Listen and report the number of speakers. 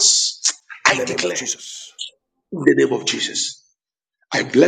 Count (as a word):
two